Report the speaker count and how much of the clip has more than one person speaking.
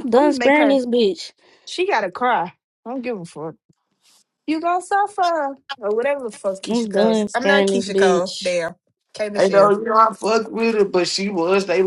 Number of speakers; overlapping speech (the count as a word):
three, about 24%